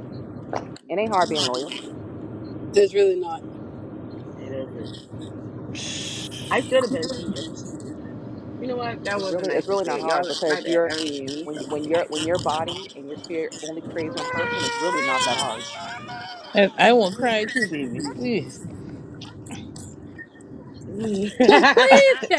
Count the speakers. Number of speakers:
four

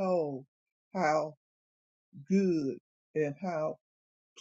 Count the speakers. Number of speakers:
one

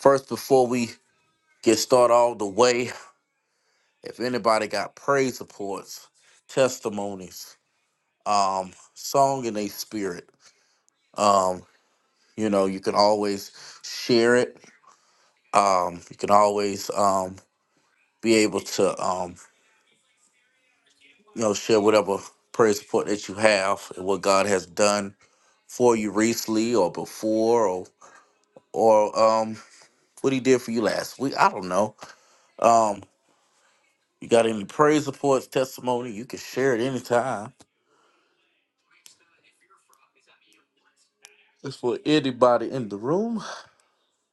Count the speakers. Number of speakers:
one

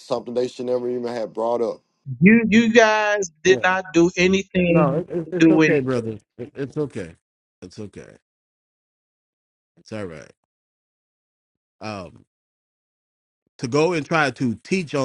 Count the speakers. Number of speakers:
three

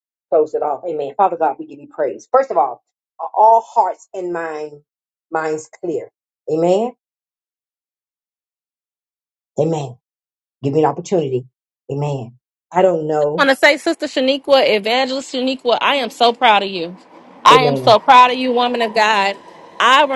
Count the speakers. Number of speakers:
two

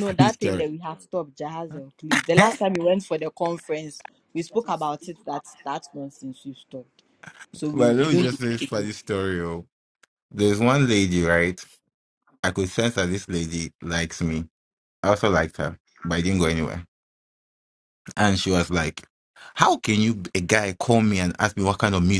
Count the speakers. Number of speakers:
two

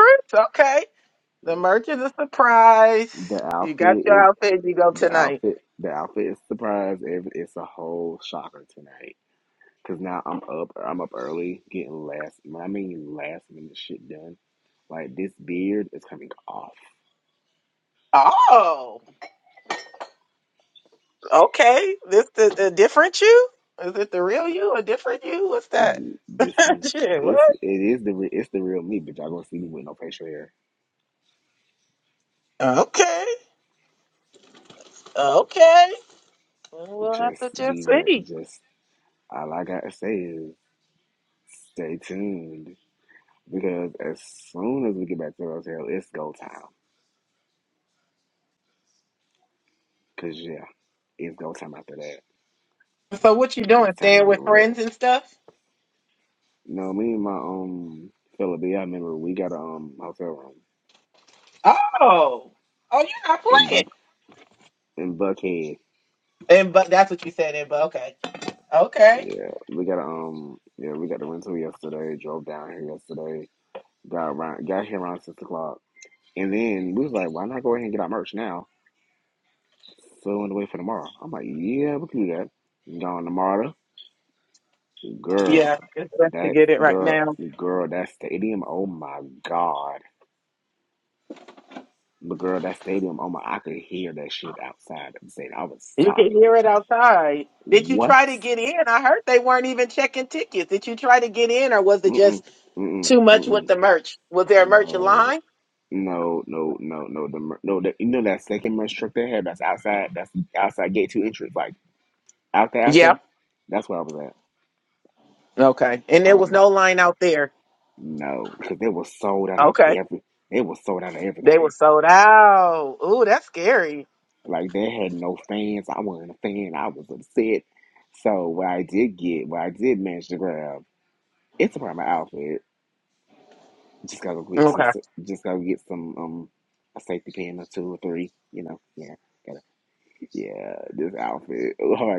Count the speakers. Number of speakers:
two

